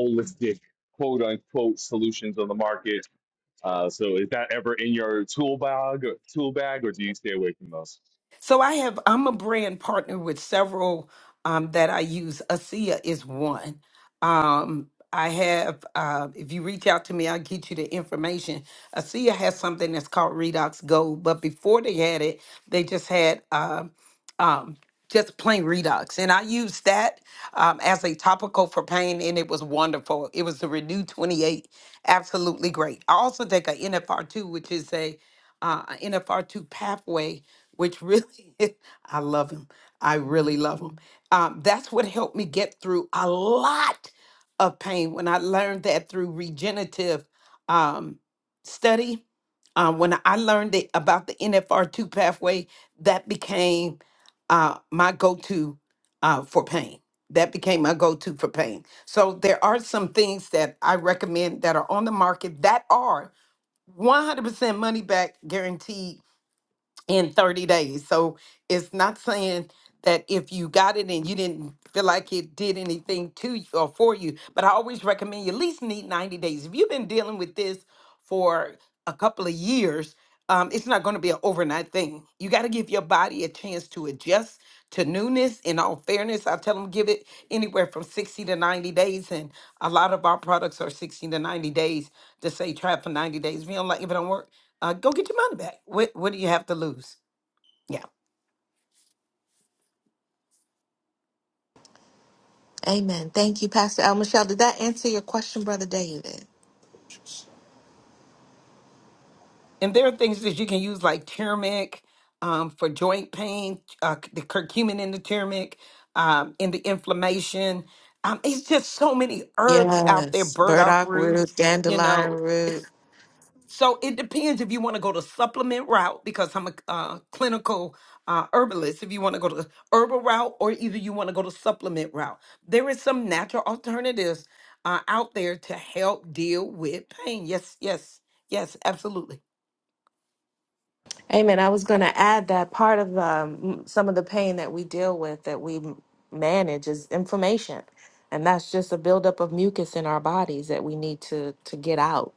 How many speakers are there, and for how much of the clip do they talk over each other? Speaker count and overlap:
3, about 1%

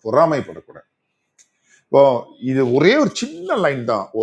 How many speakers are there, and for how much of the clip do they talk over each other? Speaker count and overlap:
1, no overlap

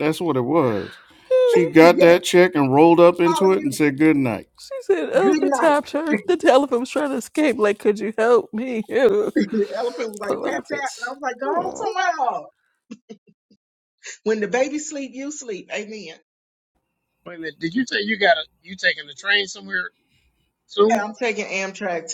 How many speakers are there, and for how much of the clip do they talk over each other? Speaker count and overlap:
4, about 14%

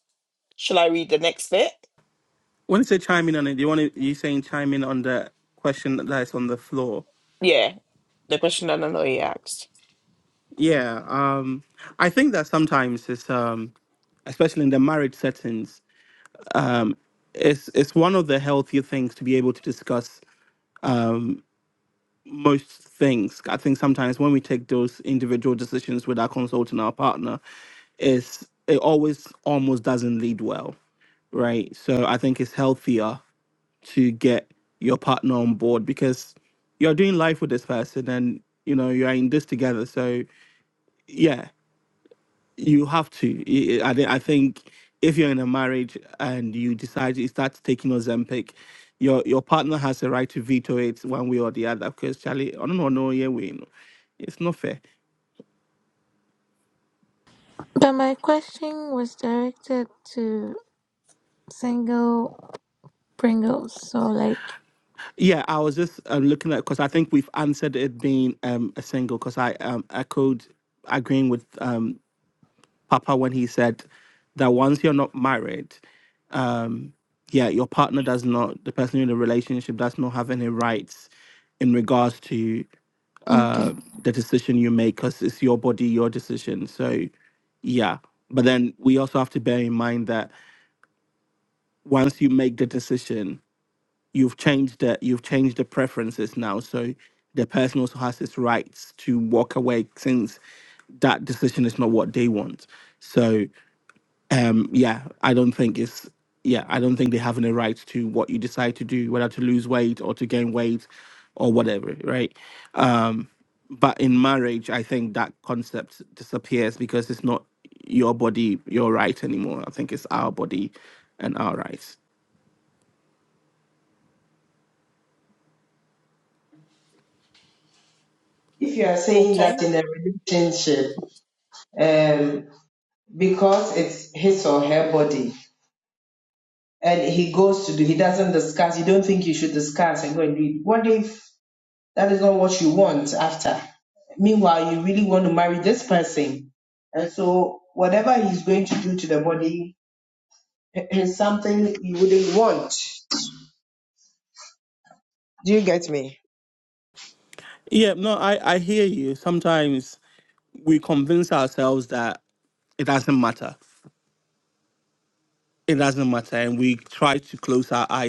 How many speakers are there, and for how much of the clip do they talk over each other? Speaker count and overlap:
4, about 1%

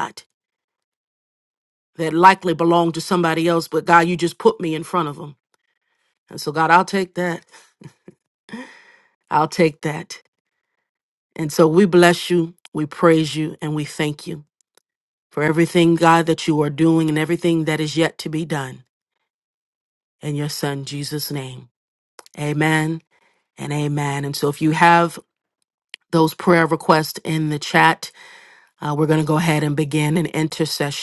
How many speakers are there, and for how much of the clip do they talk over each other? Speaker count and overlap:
1, no overlap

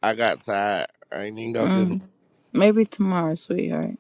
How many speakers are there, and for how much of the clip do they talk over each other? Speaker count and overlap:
2, about 9%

